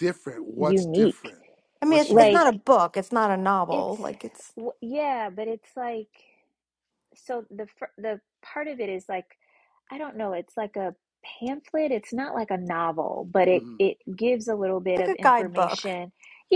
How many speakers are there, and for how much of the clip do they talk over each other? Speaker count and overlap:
3, about 16%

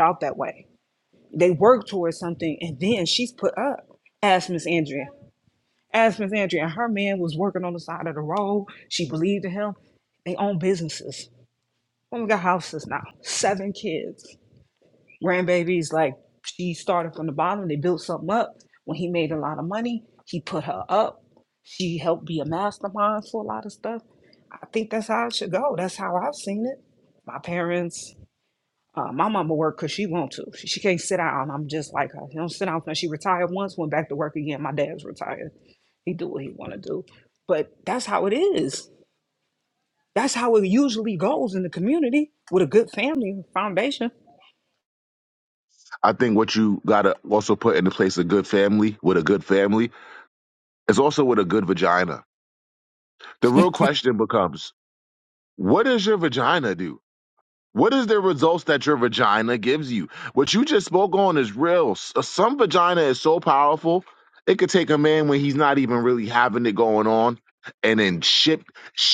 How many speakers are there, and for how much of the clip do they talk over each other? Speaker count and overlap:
2, no overlap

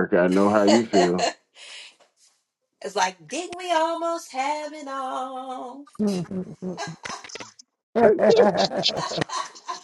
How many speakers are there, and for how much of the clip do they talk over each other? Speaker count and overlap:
3, no overlap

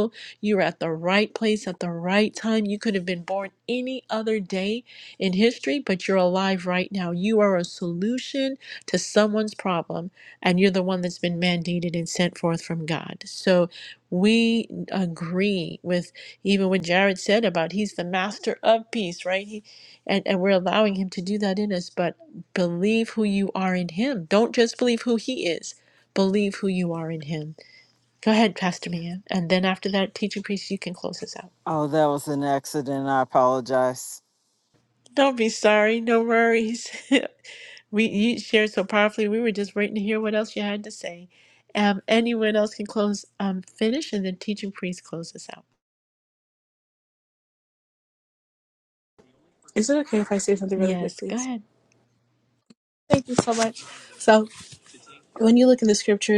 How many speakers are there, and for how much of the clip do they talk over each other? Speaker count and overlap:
3, about 1%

